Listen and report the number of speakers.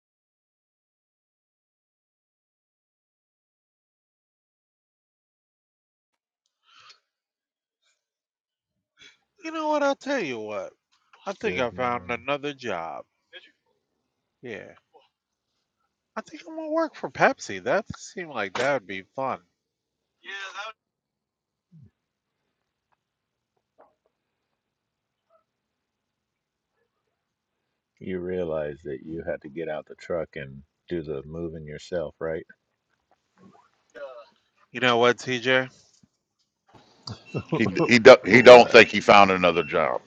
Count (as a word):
three